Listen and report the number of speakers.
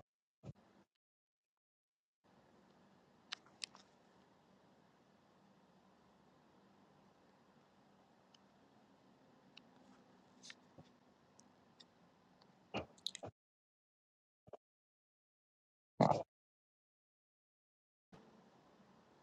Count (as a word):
zero